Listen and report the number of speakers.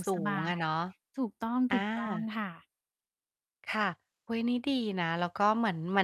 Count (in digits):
2